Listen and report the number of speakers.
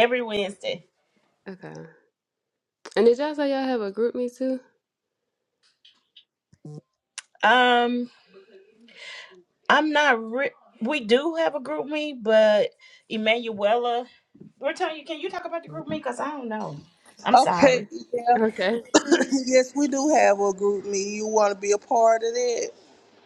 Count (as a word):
three